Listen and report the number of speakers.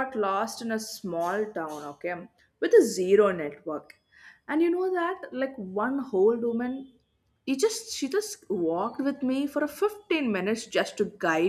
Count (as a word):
one